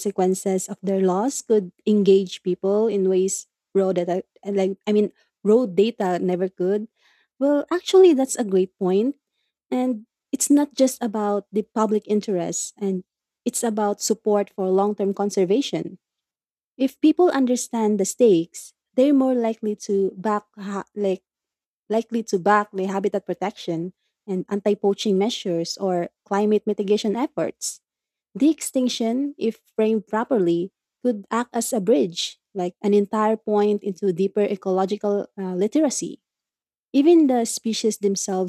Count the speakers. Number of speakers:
one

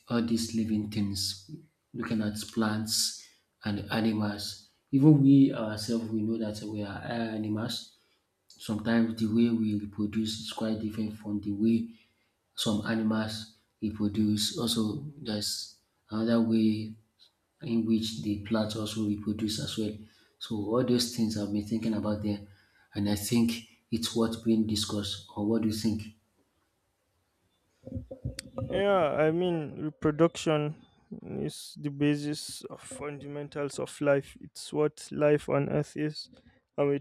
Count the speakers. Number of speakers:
two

